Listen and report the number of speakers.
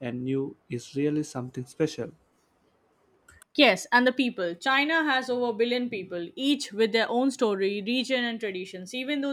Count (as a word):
two